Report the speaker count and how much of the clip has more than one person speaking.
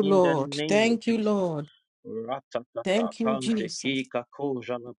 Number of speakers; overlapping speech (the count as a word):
two, about 34%